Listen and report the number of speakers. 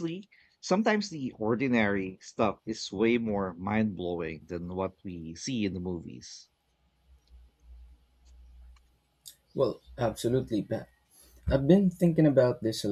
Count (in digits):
2